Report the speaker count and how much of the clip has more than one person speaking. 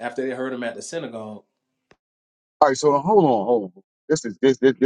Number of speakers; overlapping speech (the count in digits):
2, no overlap